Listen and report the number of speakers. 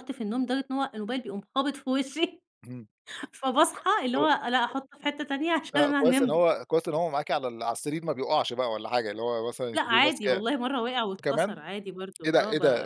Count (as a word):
two